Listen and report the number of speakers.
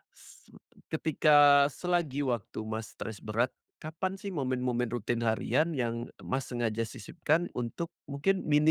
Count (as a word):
one